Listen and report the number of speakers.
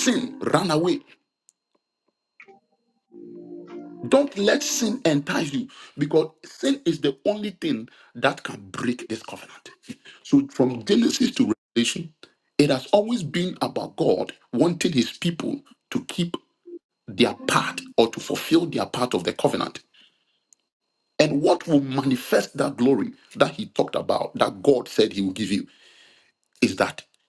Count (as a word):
one